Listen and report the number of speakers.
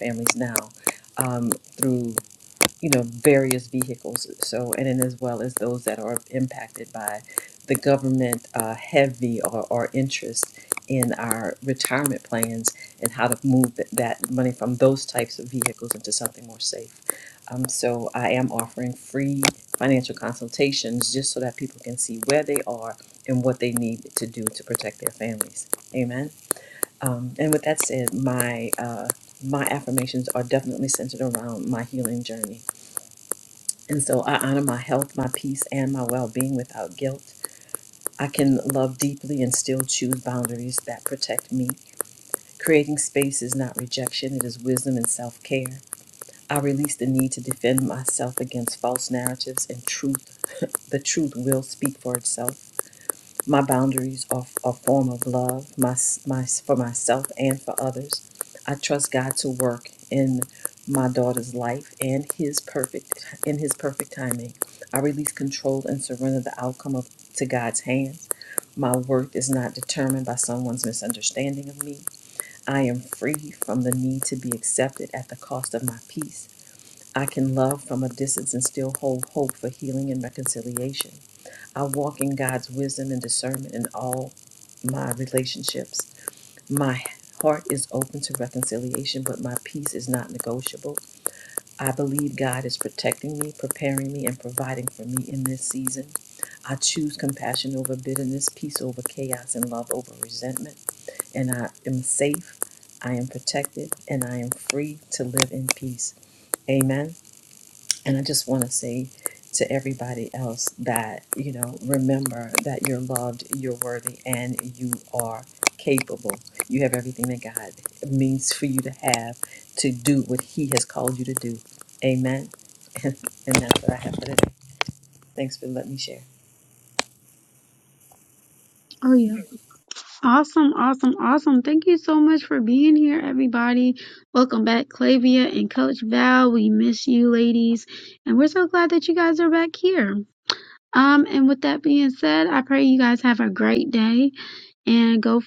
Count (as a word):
two